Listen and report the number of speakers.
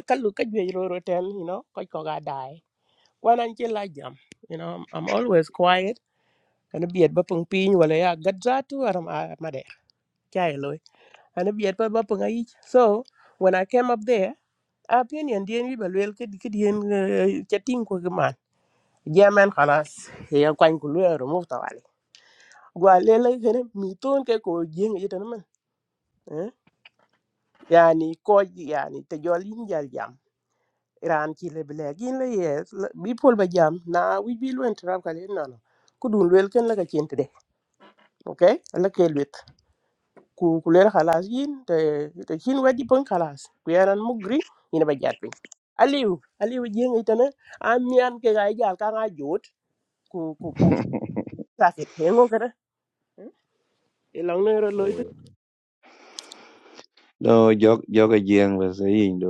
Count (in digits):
2